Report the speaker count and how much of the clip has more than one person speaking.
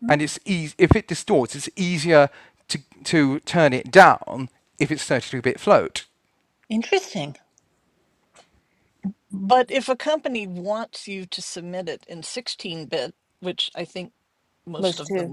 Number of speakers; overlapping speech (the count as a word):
three, about 3%